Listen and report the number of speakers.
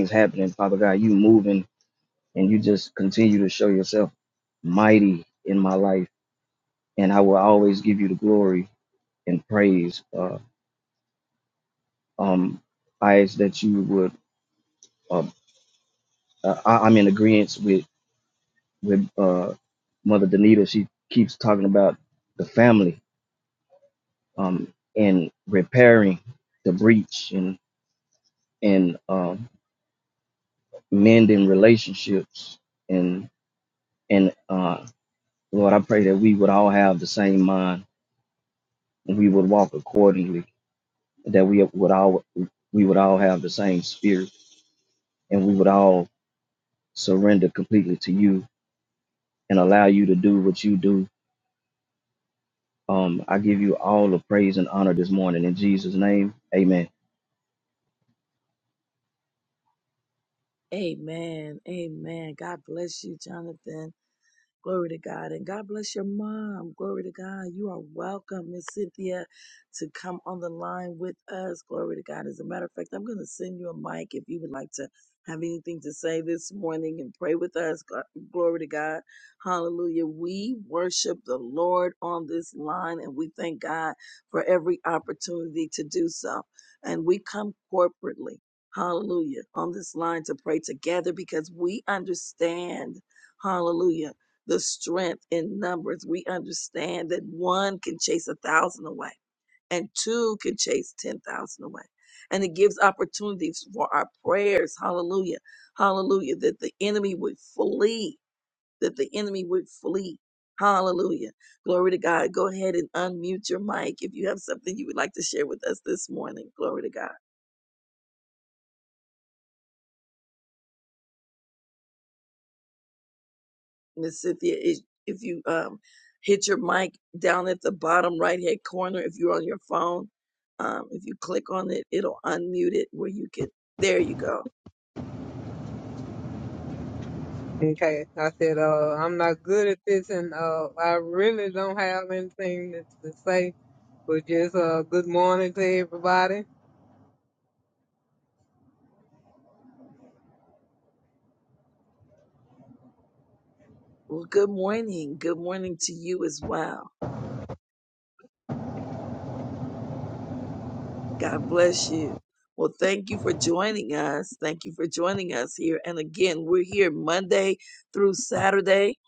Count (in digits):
3